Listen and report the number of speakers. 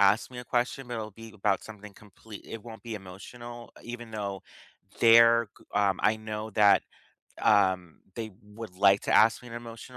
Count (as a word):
one